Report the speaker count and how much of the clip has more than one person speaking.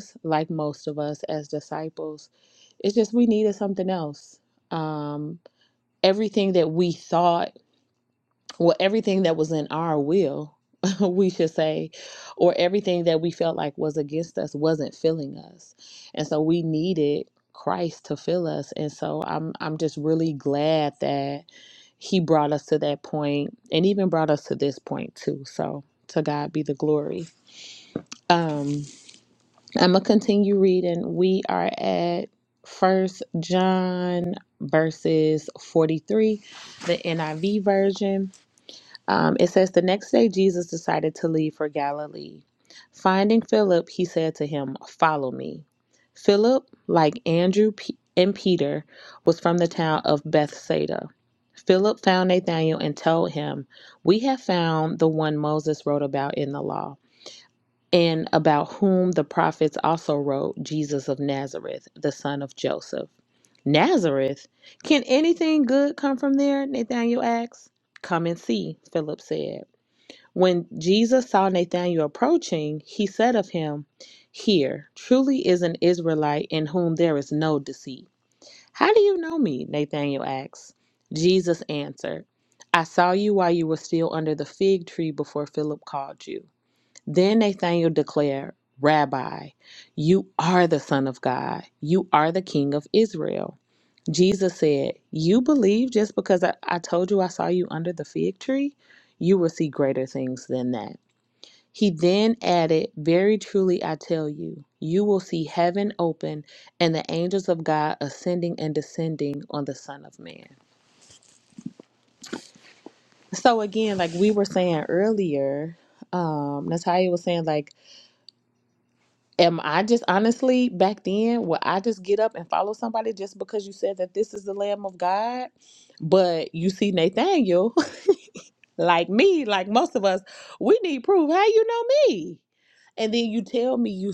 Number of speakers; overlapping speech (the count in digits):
1, no overlap